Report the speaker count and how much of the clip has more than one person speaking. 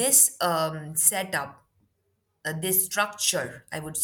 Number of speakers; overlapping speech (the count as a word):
one, no overlap